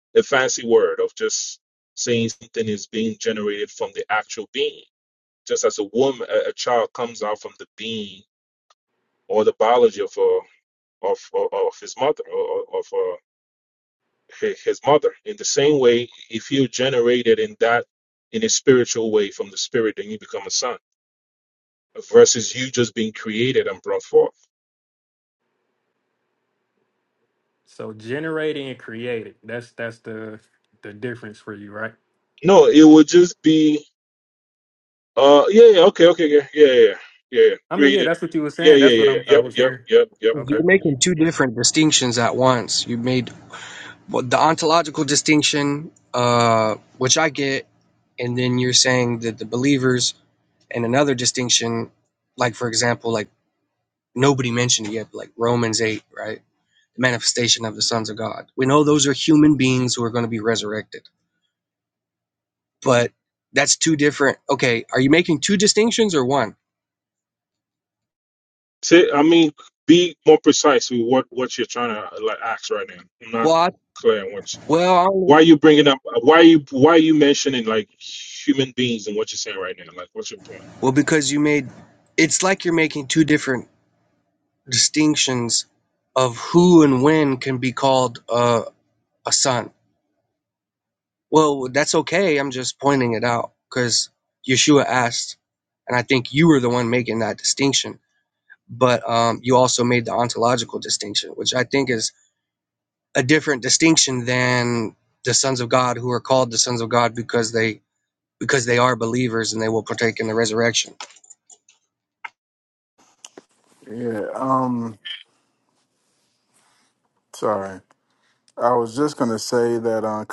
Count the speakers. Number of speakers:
4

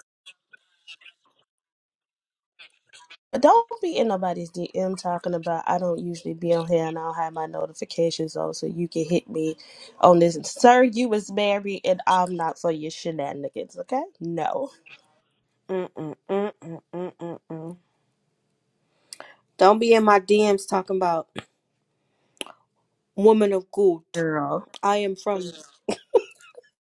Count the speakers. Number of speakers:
2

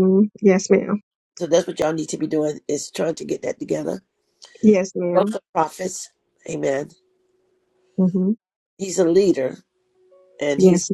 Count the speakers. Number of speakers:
2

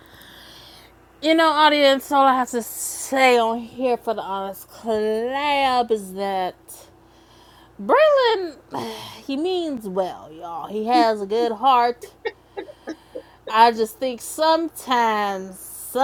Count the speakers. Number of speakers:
1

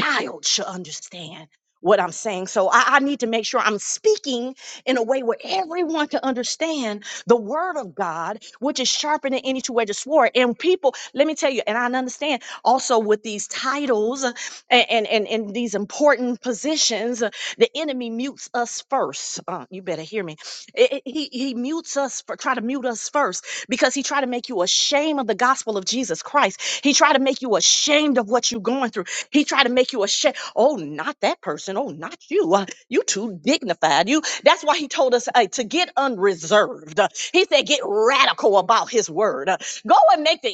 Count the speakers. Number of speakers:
1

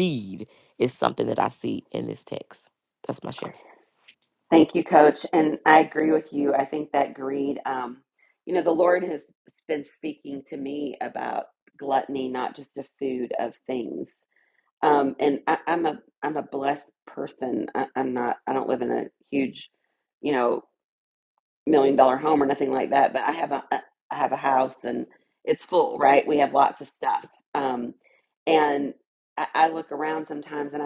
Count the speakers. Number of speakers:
2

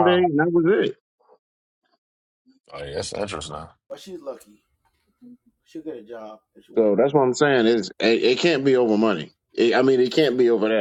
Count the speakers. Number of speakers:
3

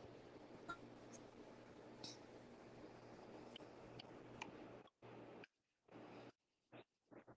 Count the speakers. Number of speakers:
0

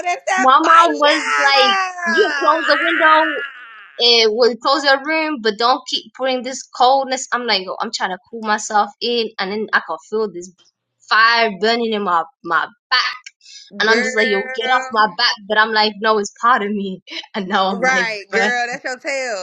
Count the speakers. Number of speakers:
2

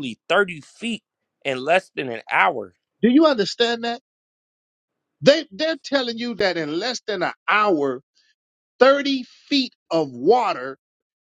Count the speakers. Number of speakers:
2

